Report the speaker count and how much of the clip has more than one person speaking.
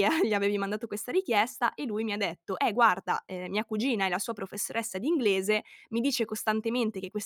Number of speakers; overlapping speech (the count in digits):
1, no overlap